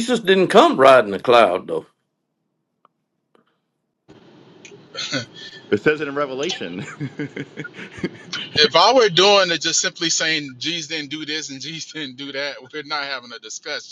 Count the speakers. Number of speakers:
3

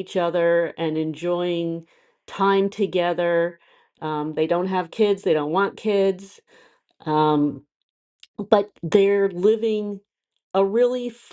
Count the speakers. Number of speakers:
1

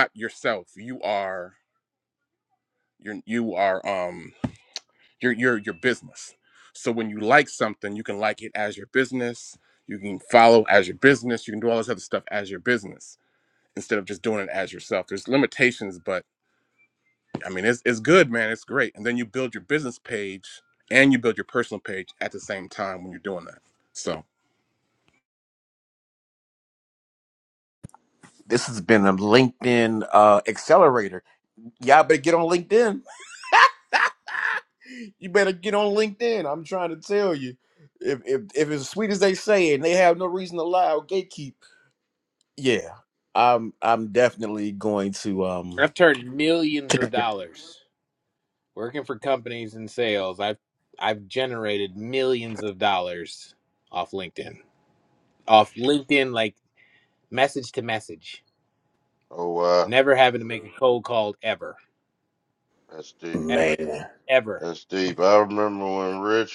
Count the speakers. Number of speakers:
4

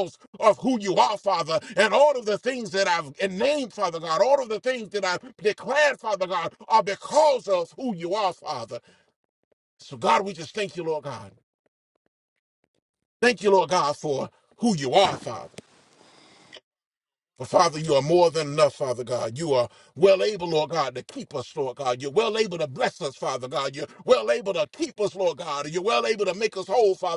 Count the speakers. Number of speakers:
1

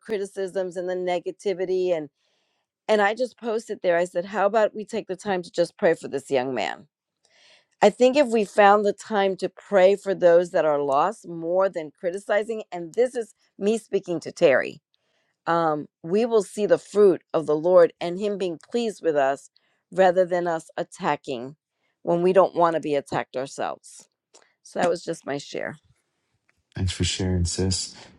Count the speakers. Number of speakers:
2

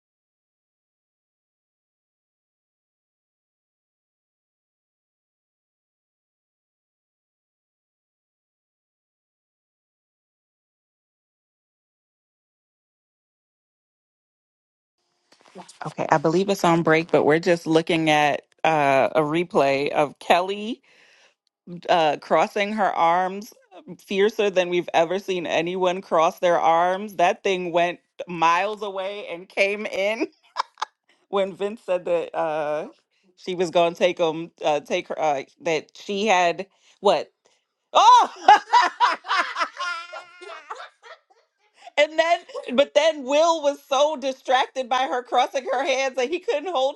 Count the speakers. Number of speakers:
1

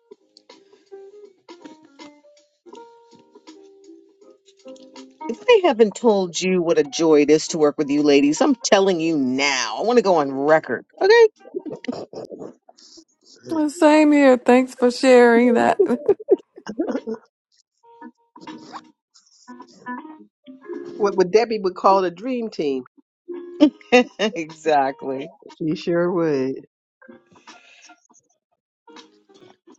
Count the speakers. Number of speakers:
3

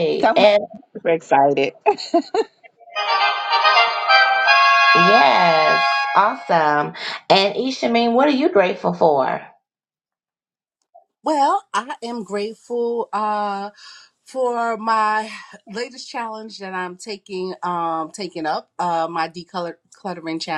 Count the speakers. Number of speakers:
3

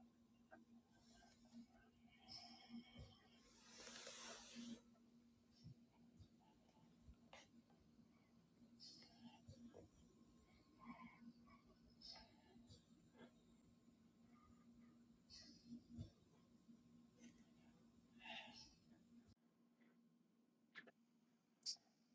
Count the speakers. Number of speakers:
0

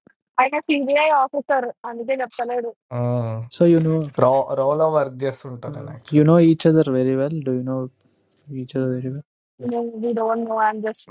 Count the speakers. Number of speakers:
3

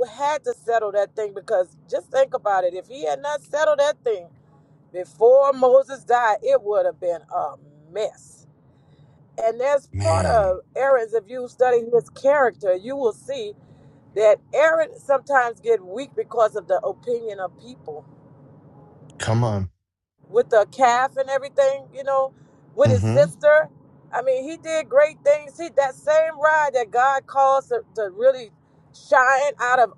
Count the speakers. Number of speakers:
2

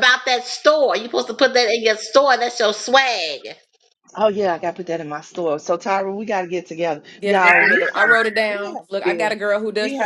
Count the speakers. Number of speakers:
3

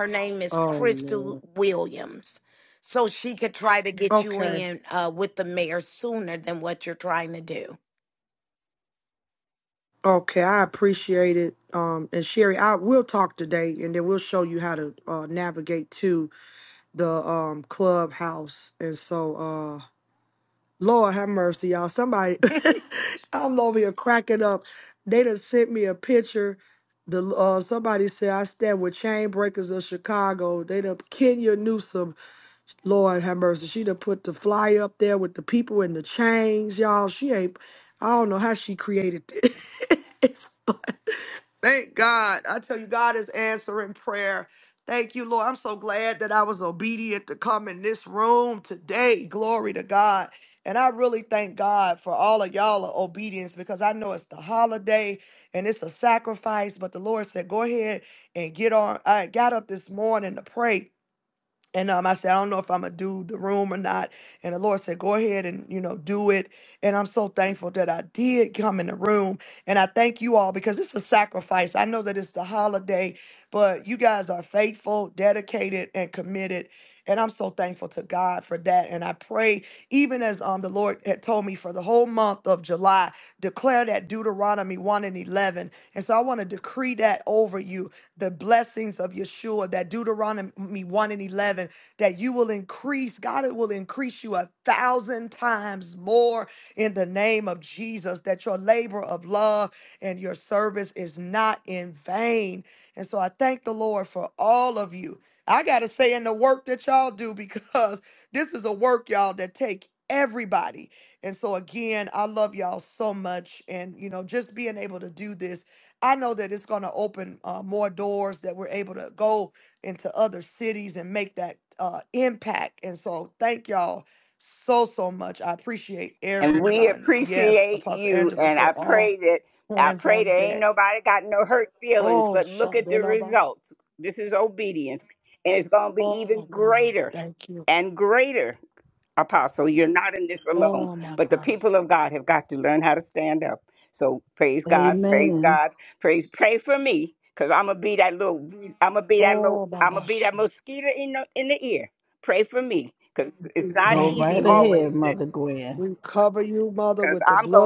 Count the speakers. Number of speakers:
4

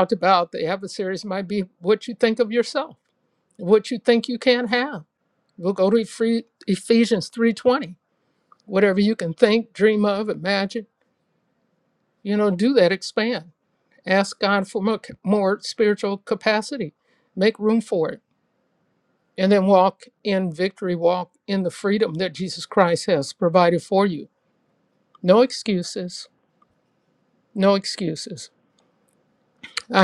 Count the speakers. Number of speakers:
1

